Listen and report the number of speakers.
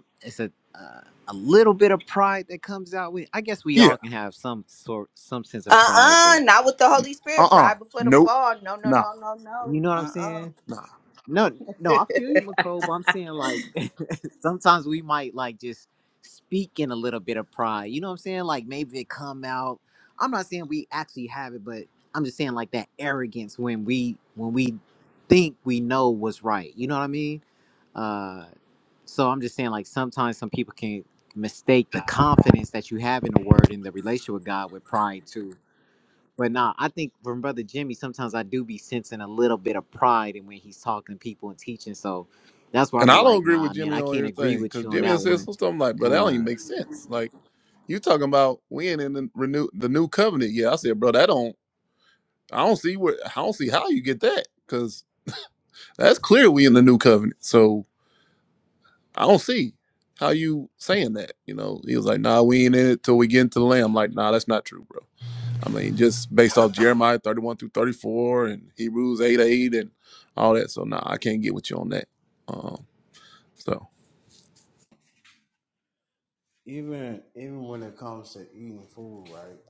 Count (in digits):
4